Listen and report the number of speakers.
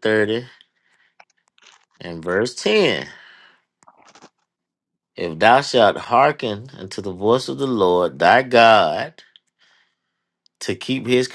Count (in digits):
1